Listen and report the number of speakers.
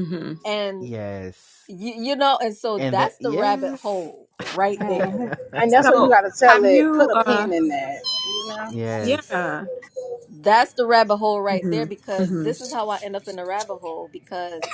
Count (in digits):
4